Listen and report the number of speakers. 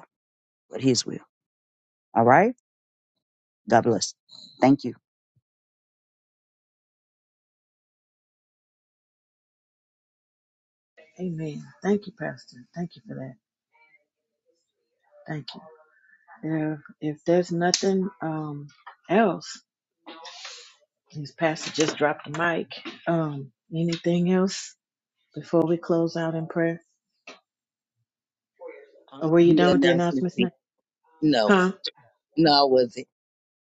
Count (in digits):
3